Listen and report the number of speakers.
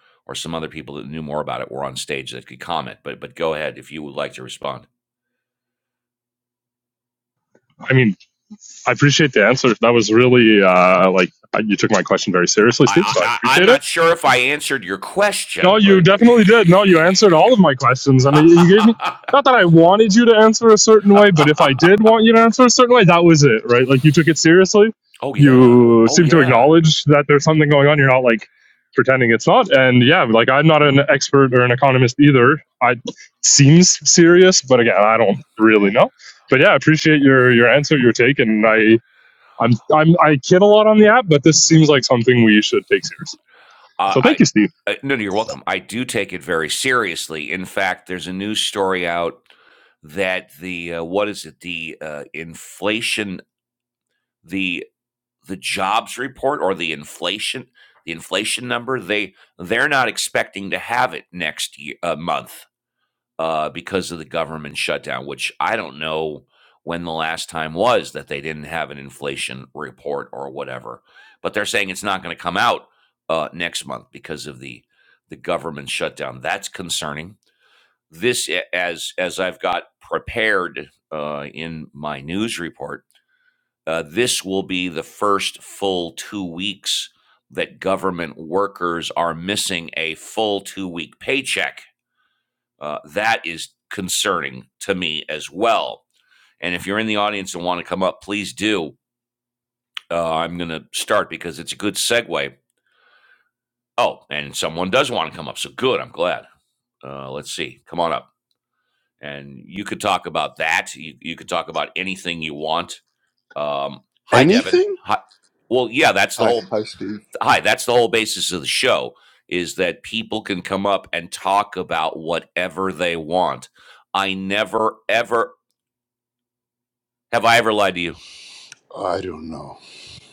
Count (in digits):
3